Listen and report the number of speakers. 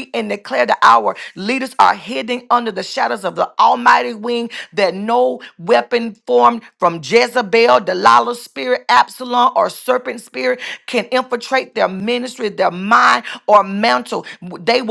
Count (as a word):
one